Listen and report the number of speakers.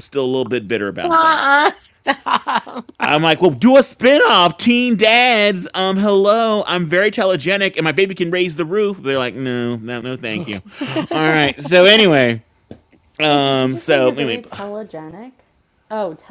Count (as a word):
three